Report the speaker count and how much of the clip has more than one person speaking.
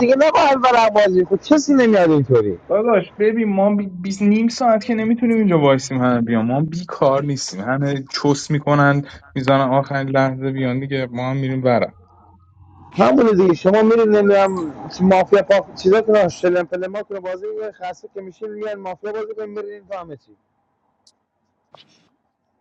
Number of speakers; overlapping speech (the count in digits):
2, no overlap